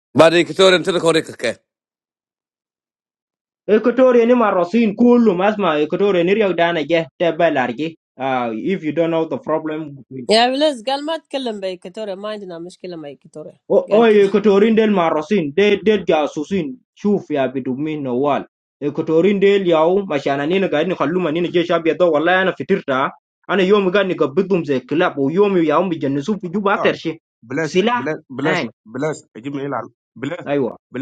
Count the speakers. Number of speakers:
4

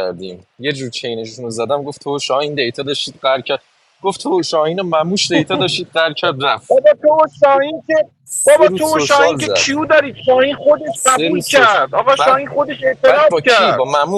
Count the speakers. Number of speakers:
2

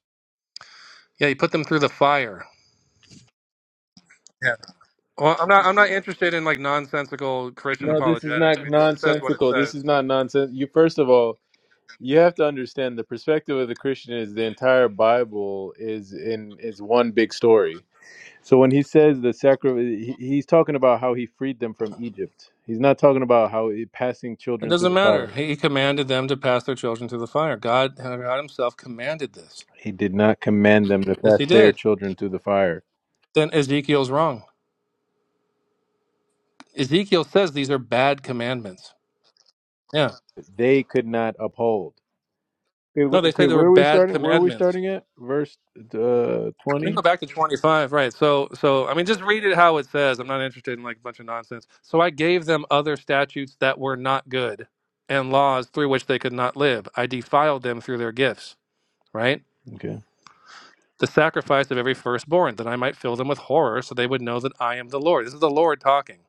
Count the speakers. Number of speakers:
2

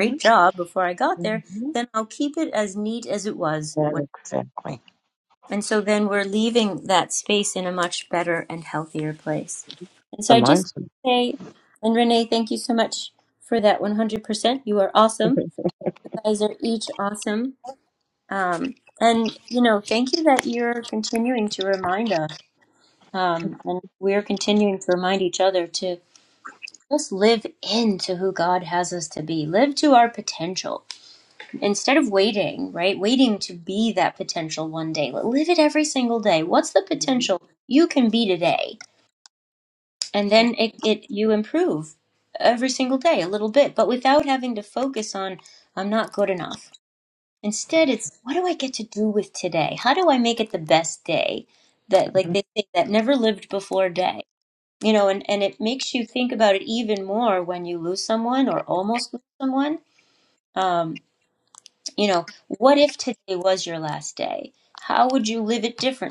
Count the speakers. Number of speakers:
2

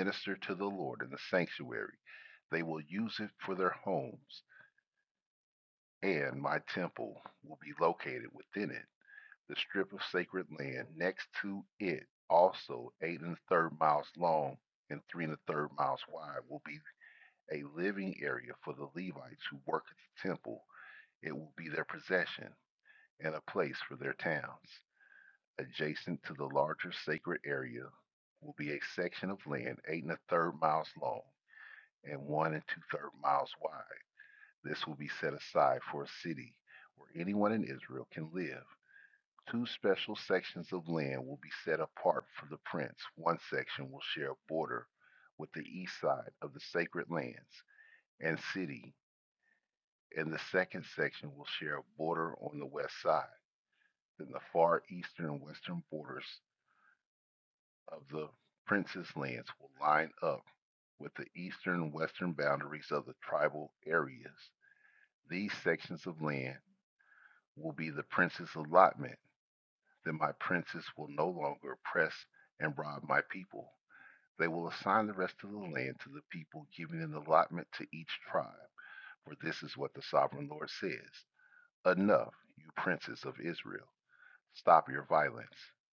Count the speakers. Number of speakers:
1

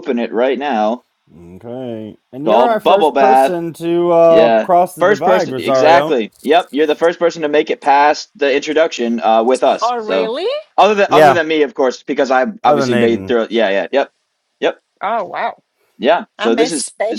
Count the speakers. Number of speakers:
3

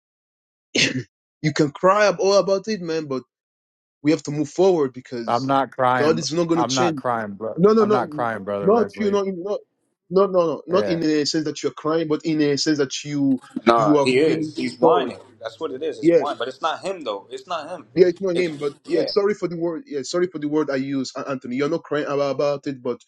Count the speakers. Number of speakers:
3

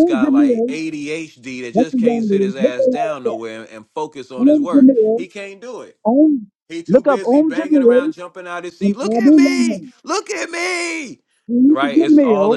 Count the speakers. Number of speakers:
2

